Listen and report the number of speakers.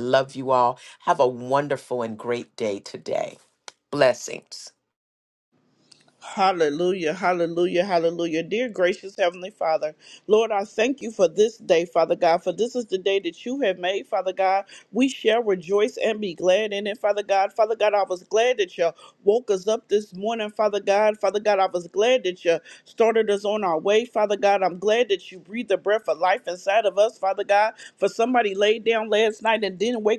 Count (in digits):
2